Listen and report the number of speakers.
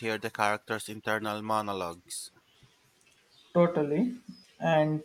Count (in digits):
2